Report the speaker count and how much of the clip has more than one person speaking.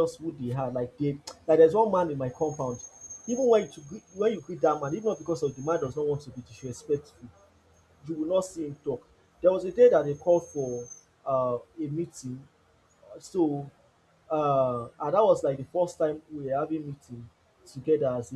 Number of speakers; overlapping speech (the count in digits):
1, no overlap